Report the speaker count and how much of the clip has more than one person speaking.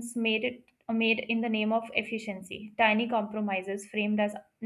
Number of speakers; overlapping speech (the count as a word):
one, no overlap